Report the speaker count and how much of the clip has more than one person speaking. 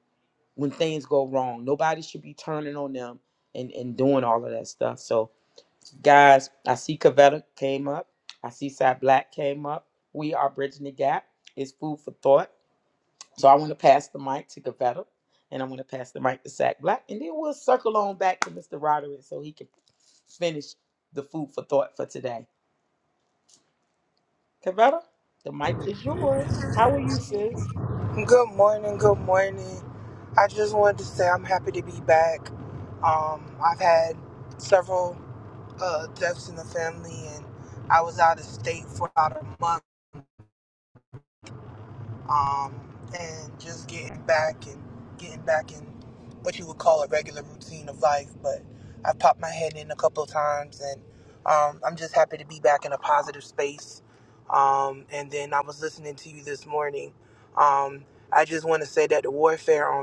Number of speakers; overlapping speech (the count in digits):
2, no overlap